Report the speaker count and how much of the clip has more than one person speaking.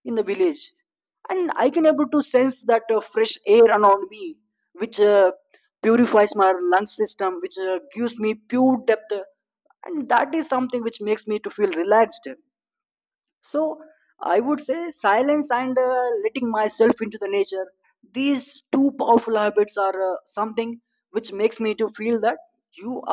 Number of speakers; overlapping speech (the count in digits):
1, no overlap